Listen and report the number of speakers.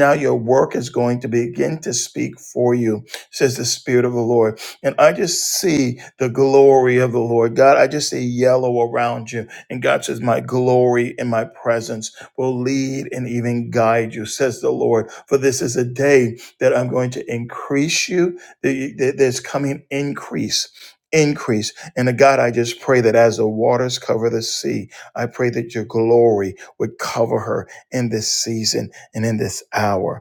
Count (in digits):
1